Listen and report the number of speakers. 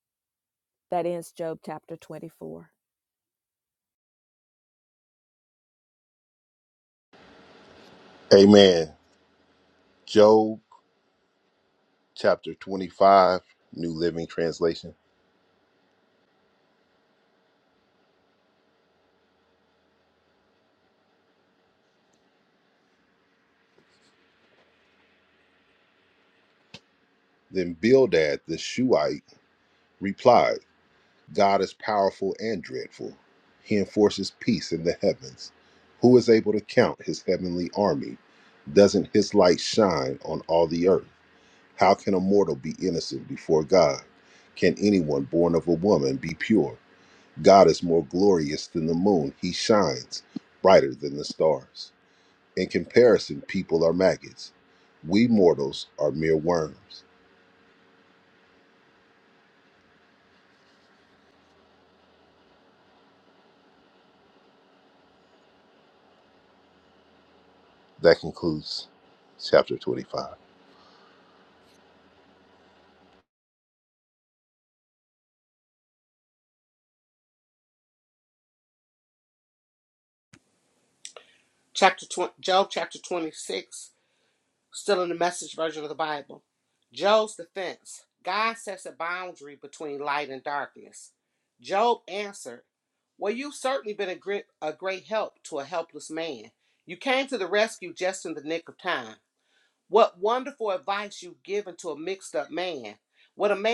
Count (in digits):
3